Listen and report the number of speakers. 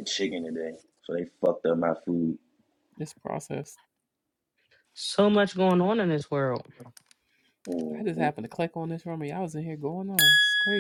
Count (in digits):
3